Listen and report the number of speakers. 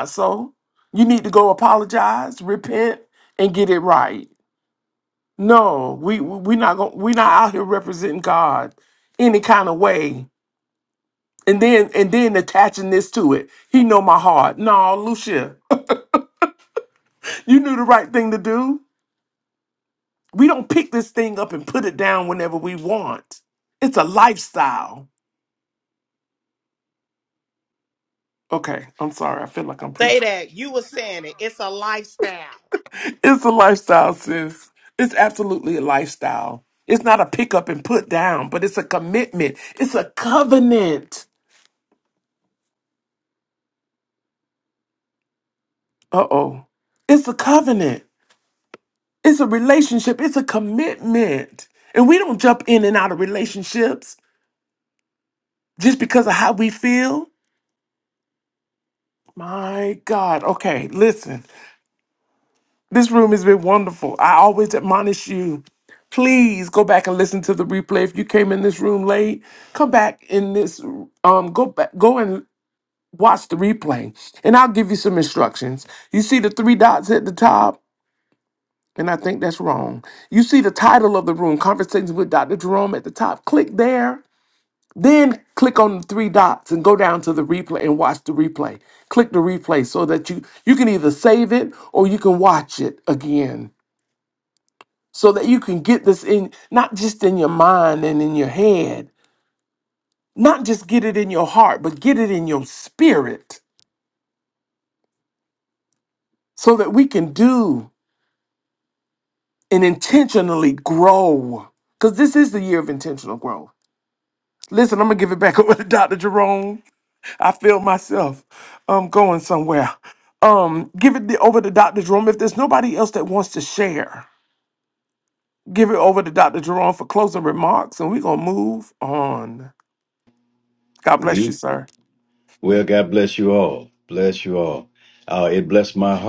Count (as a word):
three